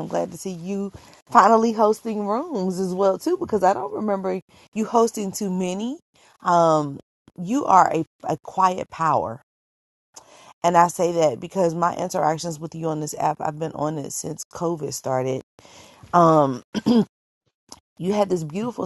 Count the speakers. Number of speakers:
1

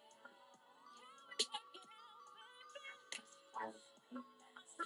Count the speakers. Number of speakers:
0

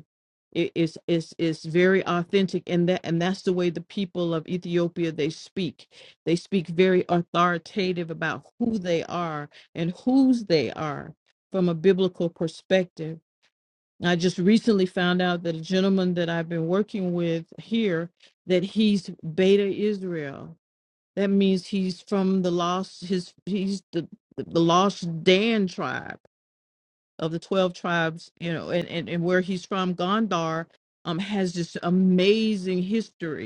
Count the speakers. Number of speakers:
1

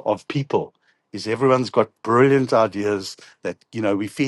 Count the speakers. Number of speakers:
1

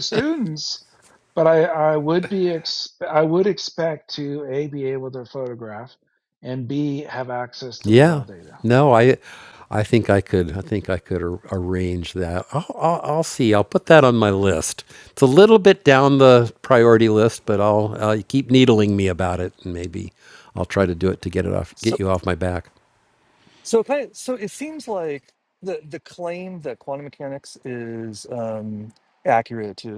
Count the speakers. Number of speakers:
3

